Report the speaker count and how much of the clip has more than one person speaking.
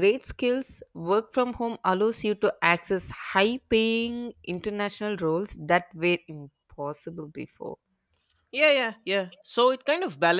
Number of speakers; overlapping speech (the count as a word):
two, no overlap